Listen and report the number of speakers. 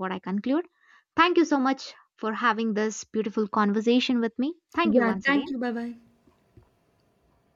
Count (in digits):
2